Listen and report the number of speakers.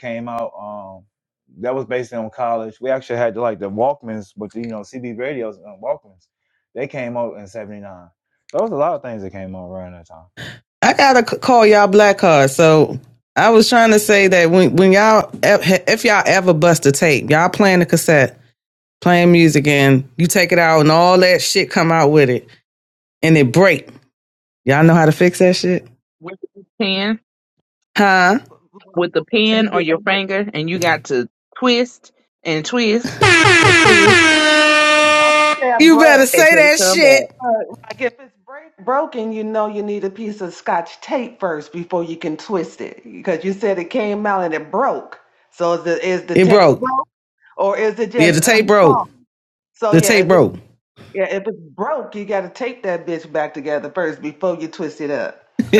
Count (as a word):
four